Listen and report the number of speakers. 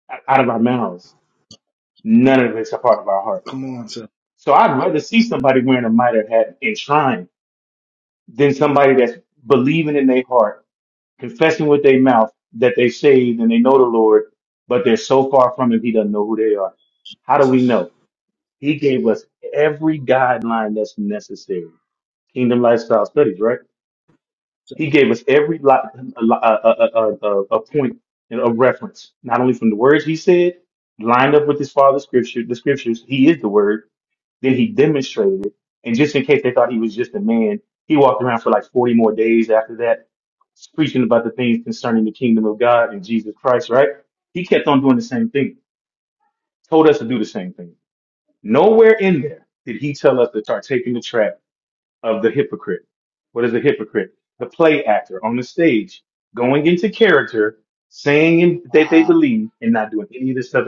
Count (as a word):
two